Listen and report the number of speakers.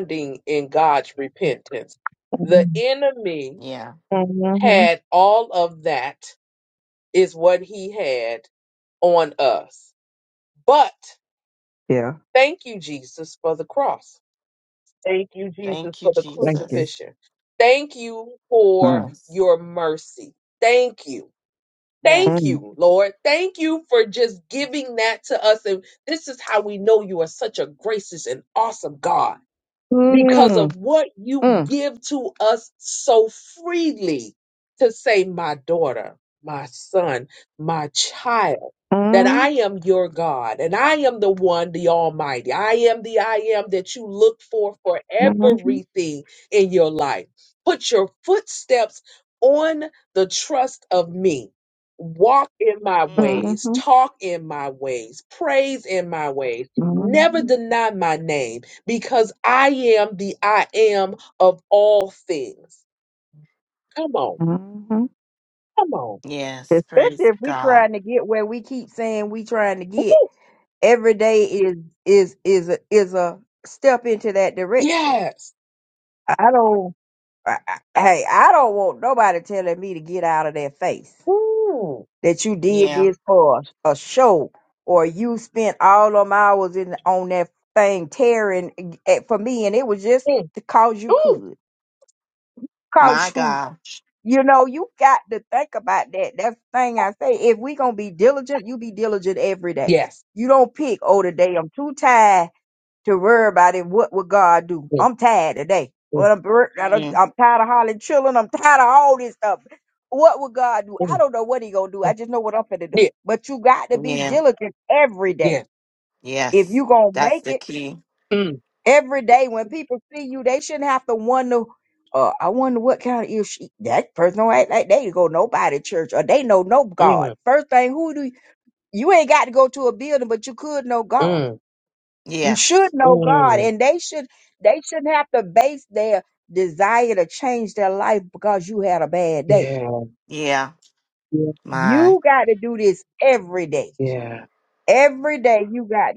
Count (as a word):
three